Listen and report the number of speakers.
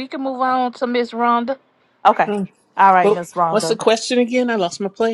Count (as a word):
three